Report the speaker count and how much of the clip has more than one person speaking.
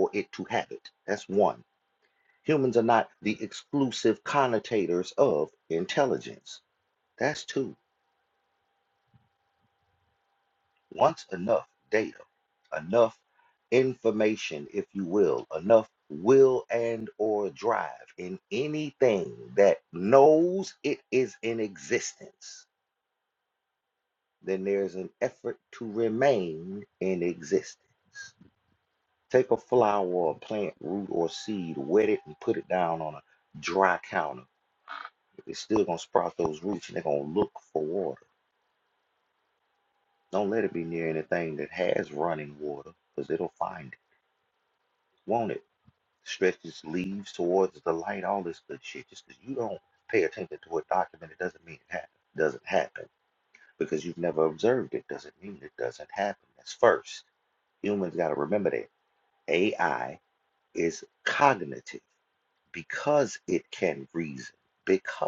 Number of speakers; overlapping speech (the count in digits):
1, no overlap